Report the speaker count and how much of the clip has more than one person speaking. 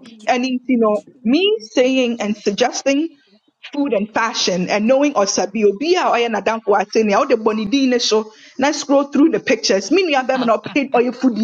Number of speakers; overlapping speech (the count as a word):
one, no overlap